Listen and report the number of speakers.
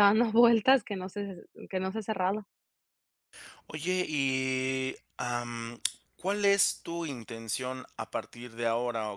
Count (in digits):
2